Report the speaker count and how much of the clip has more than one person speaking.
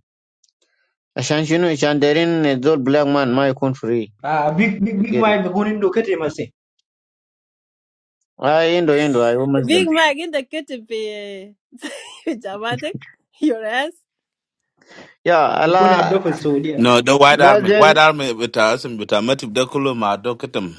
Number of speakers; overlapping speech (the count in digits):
4, about 10%